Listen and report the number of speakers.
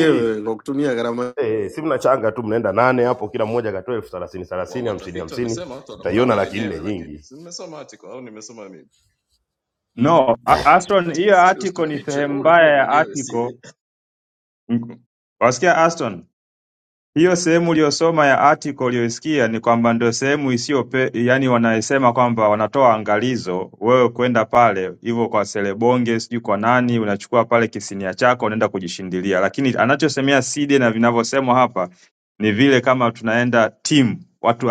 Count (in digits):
4